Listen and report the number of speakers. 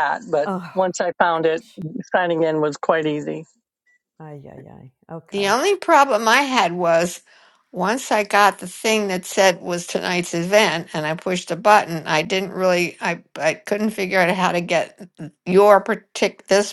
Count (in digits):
3